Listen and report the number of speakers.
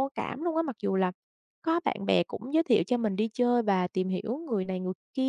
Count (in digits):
1